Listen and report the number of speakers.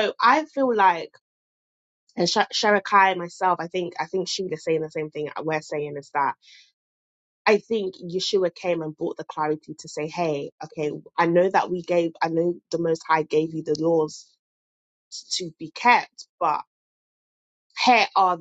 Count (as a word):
one